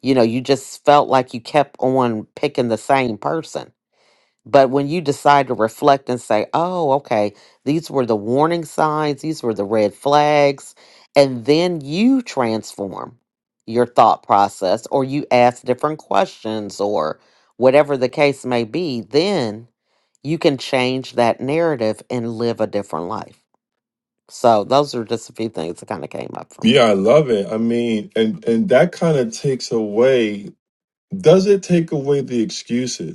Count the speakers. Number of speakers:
two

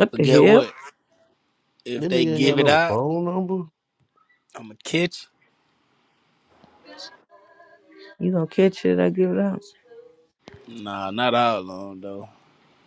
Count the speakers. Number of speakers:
three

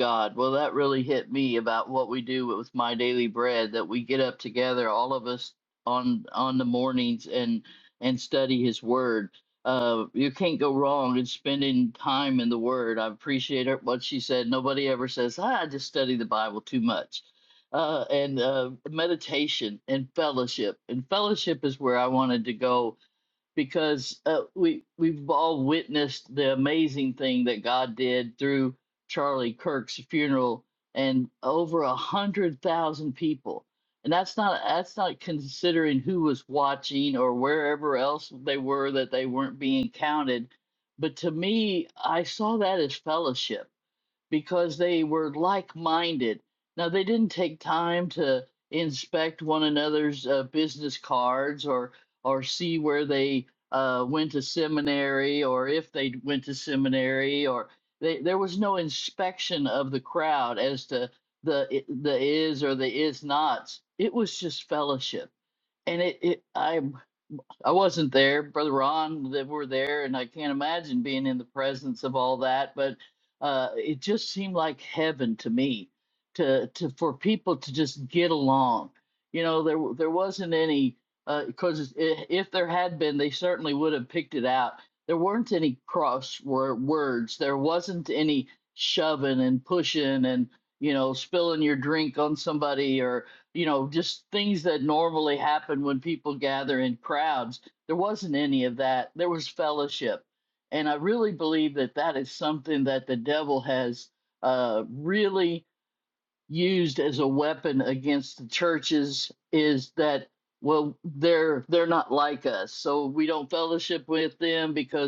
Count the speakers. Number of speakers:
one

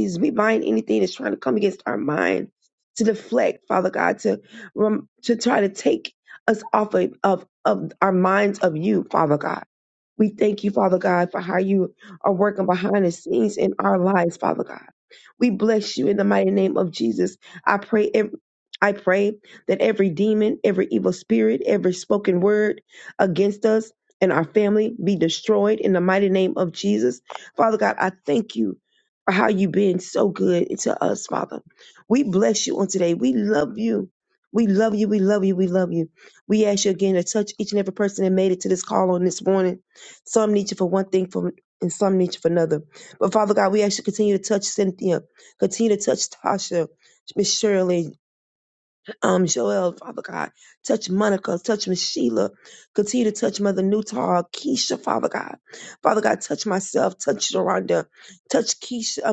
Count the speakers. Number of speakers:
one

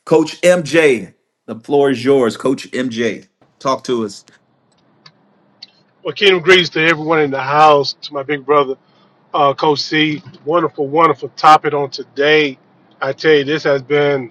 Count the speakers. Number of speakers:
two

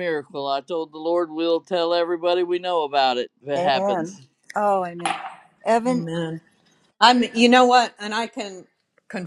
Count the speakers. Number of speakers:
three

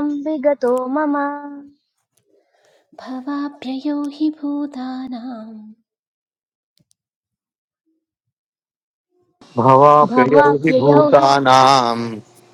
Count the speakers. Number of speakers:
three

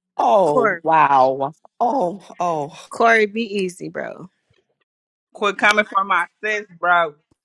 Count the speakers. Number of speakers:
three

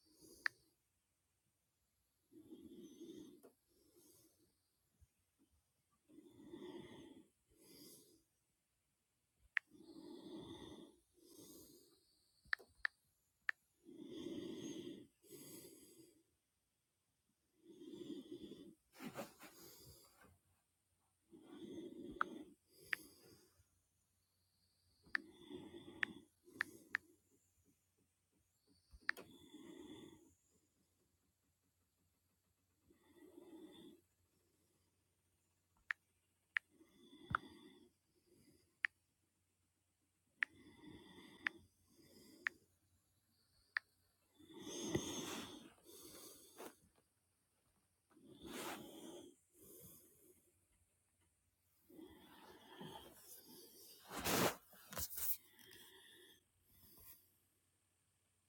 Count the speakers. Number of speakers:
zero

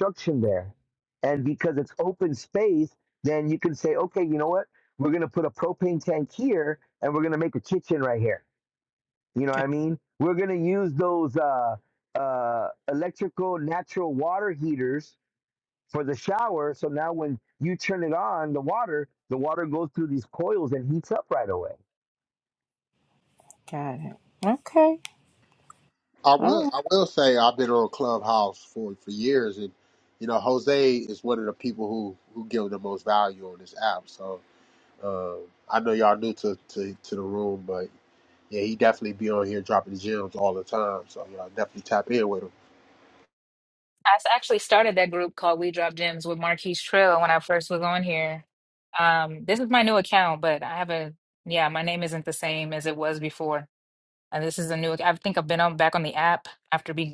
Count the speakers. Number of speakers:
four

